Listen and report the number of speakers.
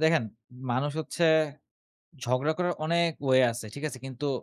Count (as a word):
one